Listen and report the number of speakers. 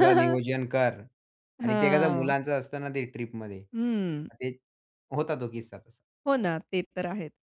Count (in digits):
2